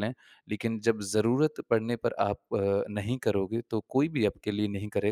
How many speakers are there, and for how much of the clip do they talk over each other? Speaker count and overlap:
one, no overlap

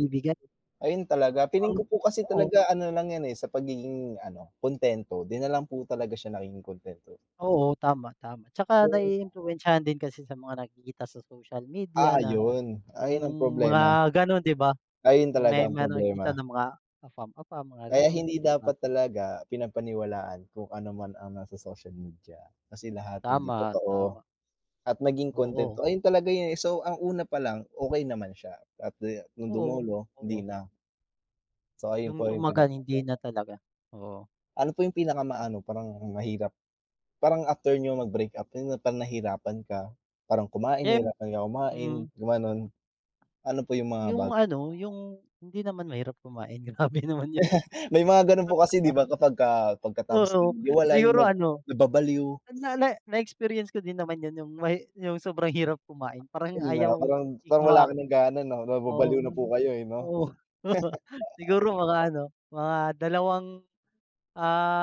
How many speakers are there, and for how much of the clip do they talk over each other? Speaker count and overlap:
two, about 15%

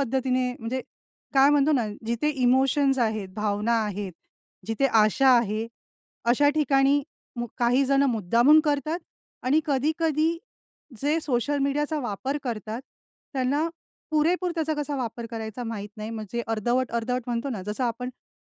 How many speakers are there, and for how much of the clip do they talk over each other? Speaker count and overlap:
one, no overlap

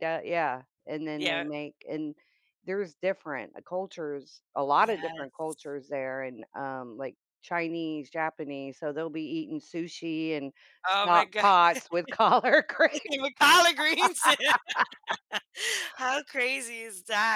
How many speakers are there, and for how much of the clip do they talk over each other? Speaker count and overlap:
two, about 7%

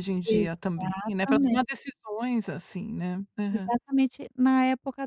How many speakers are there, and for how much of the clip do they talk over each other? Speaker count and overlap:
two, about 24%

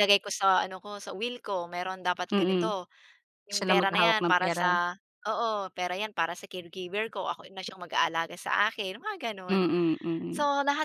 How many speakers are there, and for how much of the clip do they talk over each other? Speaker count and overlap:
two, about 16%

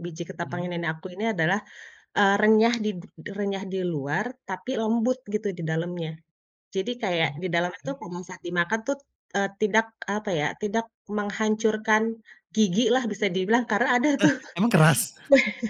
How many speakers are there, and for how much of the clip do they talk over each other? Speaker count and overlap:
two, about 7%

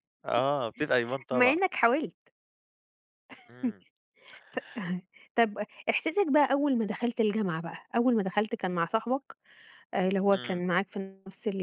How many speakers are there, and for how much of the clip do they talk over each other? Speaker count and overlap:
two, about 4%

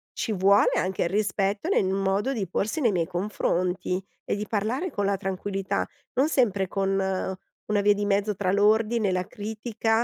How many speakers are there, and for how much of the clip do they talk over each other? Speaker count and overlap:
one, no overlap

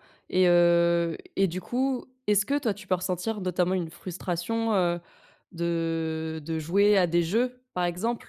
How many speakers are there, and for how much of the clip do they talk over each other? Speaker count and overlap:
one, no overlap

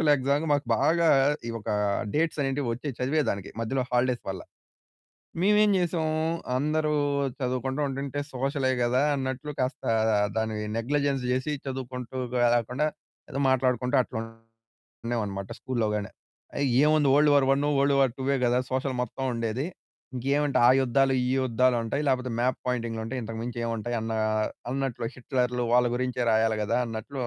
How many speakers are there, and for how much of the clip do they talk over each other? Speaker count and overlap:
one, no overlap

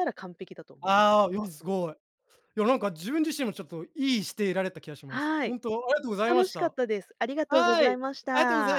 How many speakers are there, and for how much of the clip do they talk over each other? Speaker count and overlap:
two, about 23%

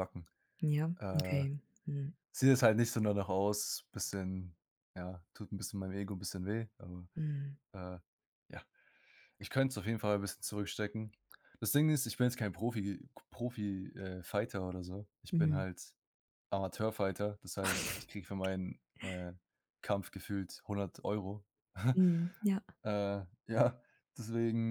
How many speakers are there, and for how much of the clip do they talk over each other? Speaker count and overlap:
two, about 3%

